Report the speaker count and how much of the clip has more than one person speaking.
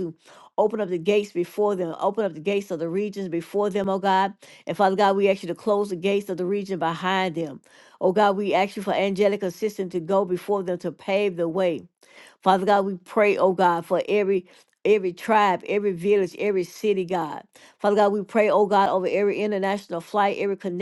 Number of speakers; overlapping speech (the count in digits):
1, no overlap